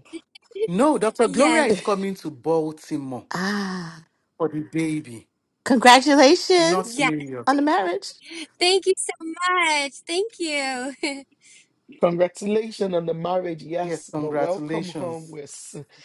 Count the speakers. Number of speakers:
four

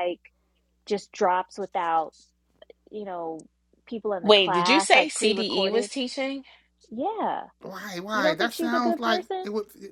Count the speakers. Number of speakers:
three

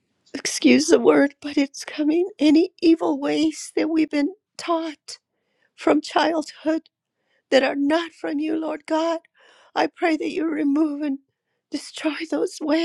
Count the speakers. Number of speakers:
one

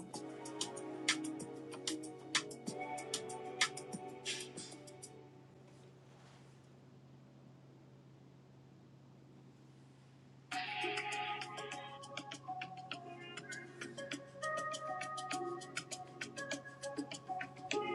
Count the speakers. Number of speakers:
zero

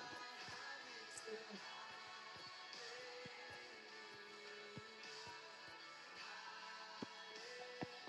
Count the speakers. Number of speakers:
zero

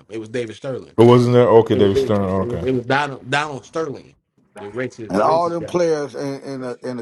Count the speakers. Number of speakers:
three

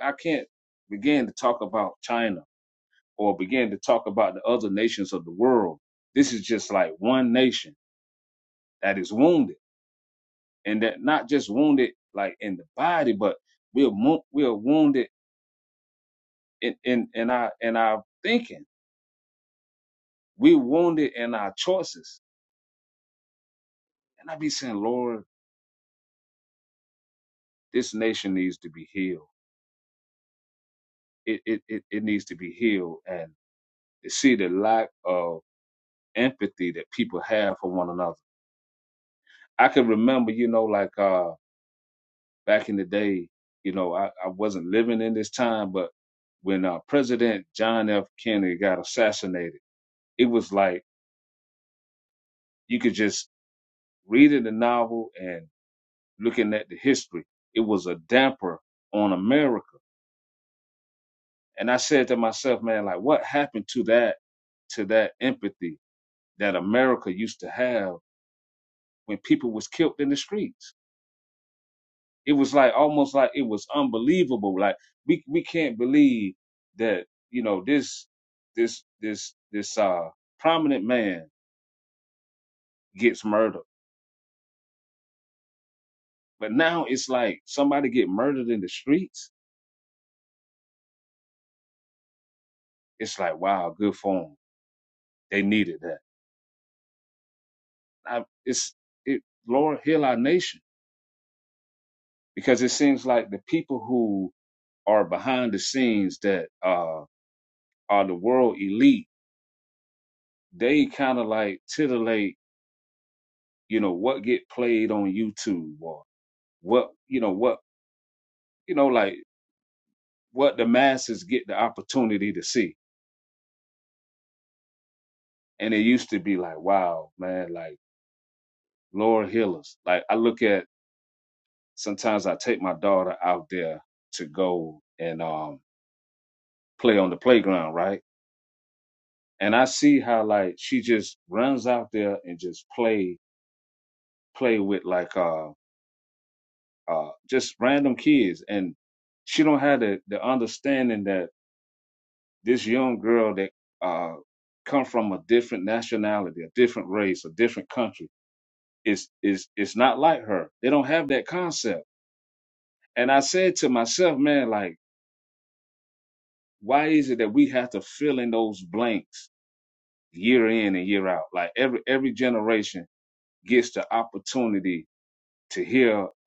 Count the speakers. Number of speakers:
one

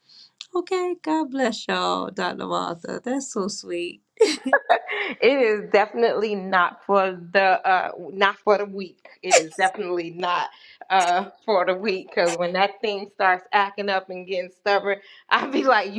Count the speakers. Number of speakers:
two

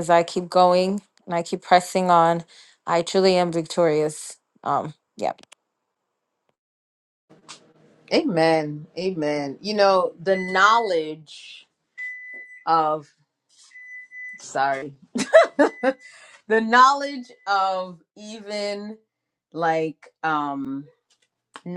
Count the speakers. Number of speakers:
two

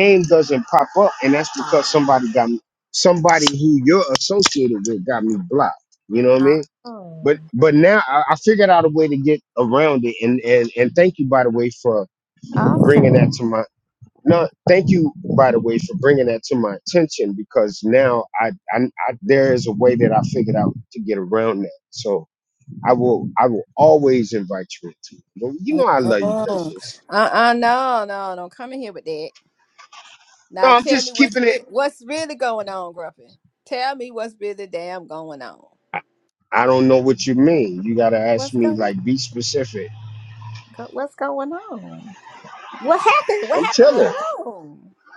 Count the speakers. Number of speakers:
two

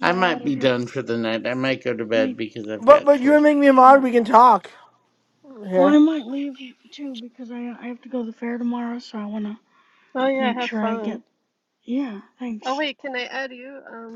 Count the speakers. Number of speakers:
four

